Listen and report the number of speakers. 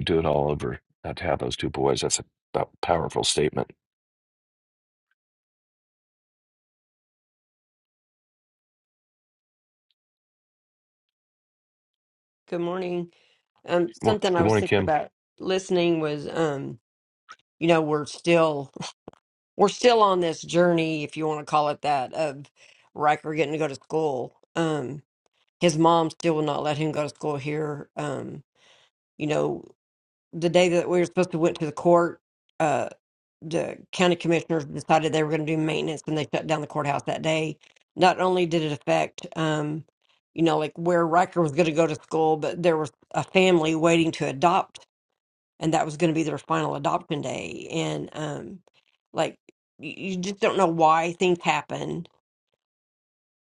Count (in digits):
2